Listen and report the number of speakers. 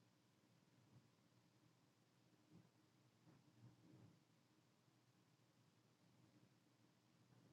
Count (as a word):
zero